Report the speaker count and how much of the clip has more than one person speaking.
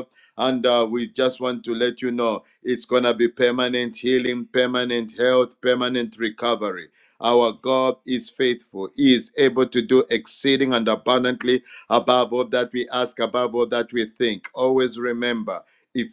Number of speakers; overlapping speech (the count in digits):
1, no overlap